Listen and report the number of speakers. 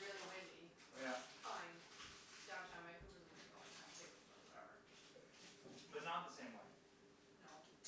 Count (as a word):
two